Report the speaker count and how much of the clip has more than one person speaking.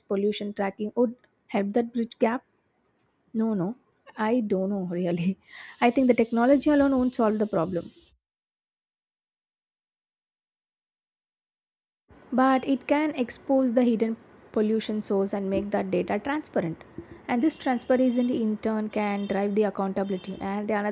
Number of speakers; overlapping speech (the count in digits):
1, no overlap